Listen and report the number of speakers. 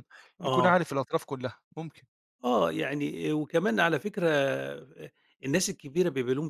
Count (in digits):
2